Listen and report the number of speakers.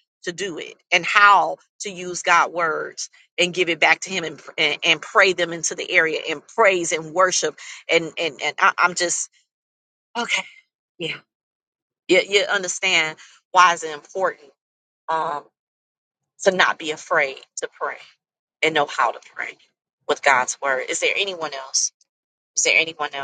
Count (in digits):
1